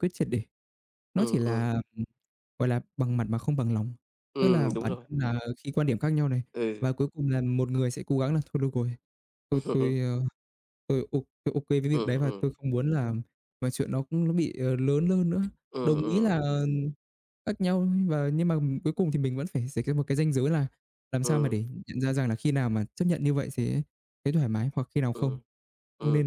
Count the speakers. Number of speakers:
2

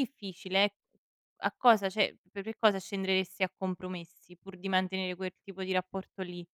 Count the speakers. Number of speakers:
1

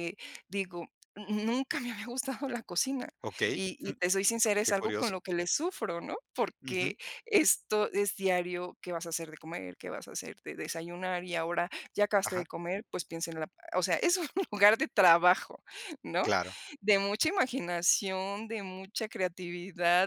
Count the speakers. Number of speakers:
2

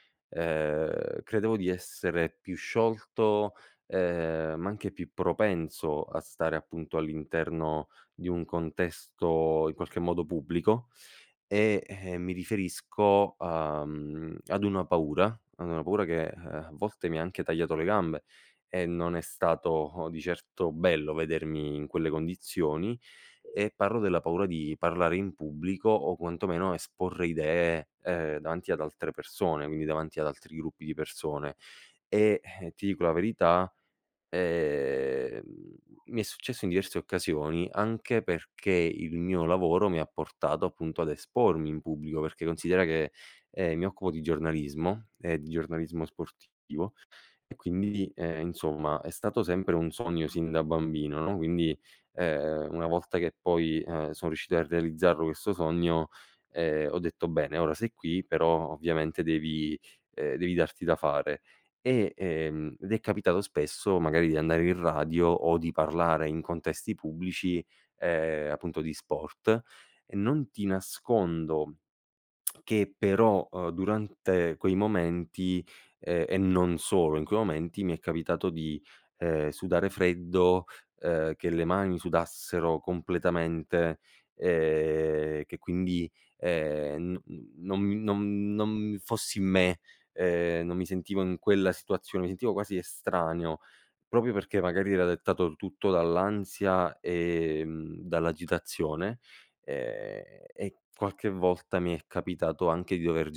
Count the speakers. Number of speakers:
1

